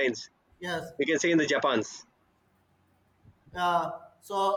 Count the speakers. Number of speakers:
two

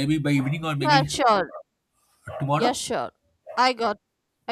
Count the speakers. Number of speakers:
two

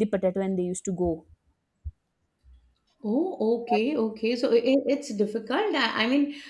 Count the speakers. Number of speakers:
two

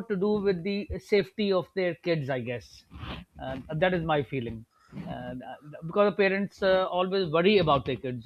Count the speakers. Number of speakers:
one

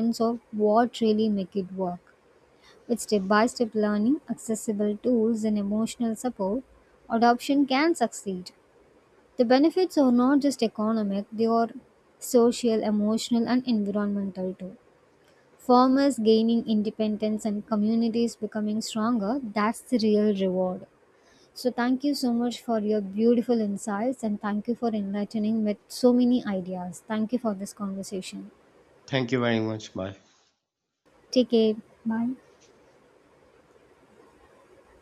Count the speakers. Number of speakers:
two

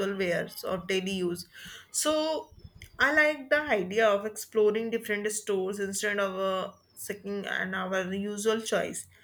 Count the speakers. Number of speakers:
one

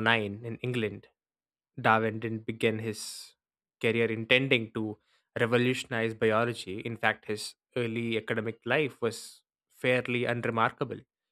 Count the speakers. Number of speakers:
one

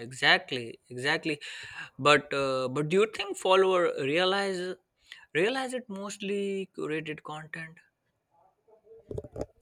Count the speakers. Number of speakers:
one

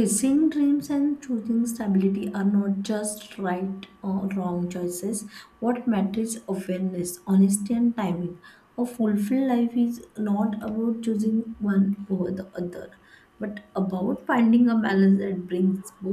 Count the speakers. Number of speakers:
one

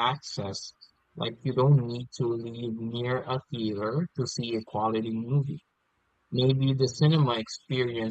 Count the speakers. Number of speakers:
one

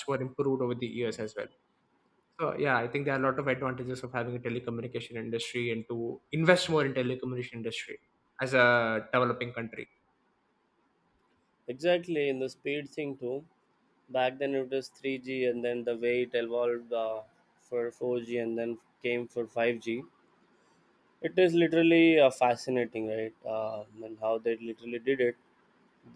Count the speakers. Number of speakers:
two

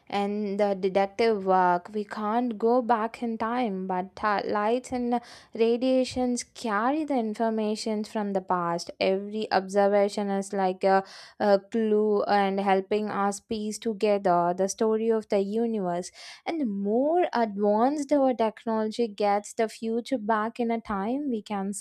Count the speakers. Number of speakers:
one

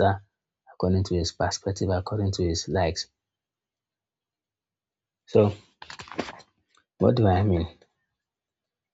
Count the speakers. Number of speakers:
one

